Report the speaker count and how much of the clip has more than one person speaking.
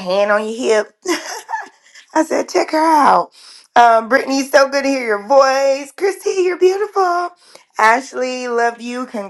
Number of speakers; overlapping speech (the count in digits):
1, no overlap